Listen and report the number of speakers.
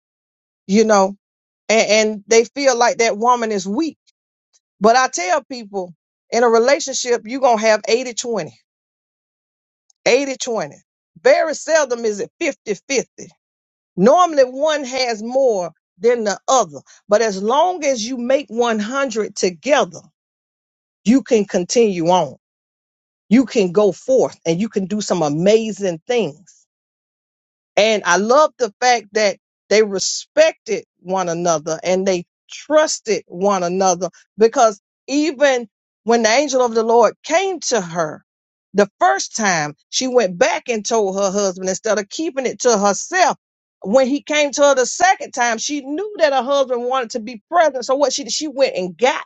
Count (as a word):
one